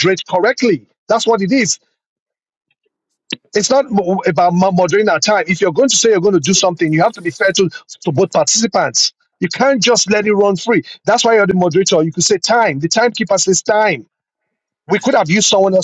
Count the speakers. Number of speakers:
1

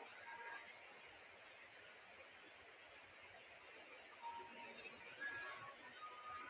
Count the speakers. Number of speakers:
0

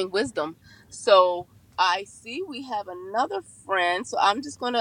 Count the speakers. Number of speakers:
1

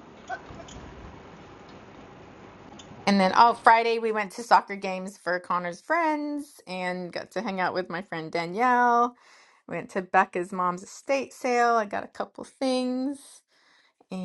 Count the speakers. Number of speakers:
1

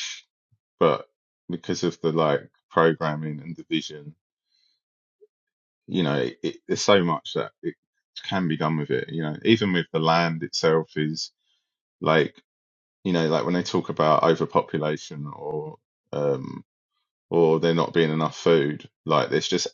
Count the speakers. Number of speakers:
1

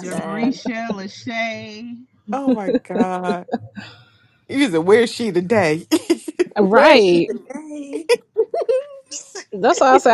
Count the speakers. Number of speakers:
4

